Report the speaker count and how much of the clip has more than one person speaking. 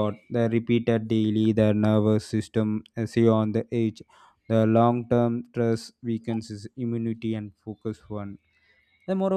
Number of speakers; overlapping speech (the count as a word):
one, no overlap